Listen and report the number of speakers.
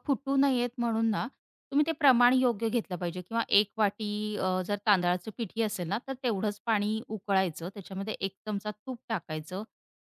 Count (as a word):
one